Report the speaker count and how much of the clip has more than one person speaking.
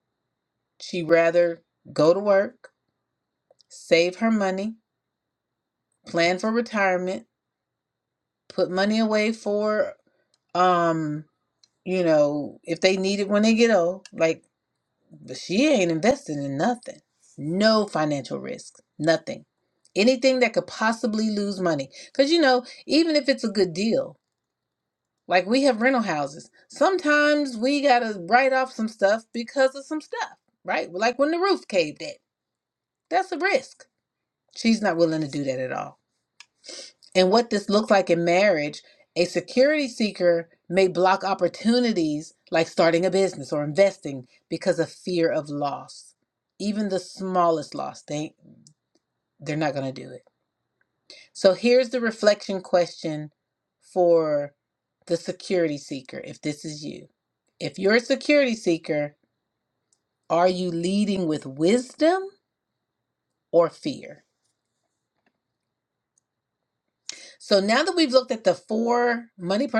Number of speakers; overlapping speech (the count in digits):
1, no overlap